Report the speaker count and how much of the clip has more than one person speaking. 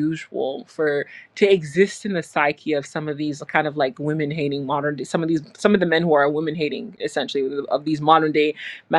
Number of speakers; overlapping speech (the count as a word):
one, no overlap